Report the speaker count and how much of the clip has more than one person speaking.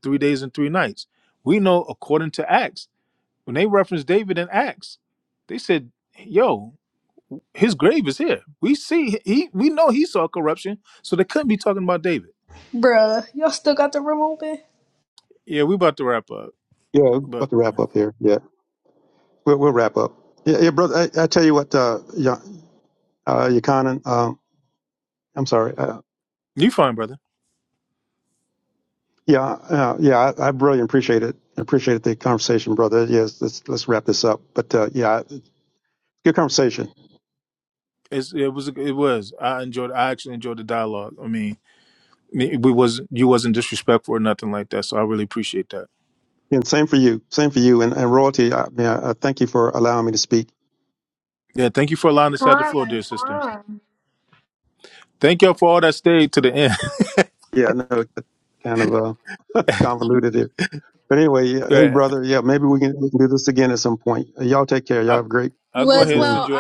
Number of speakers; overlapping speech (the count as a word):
three, about 4%